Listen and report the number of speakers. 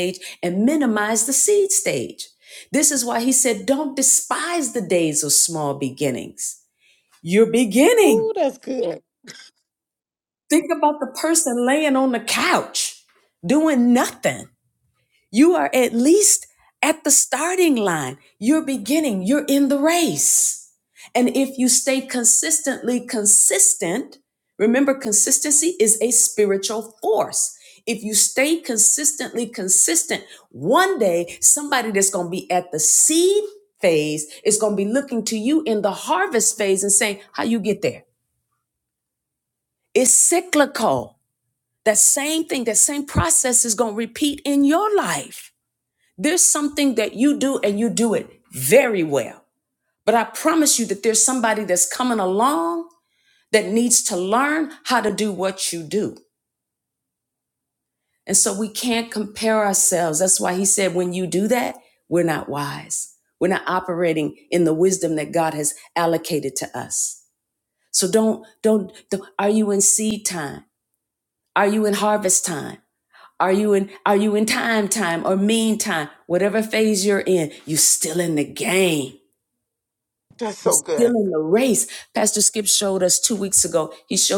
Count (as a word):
two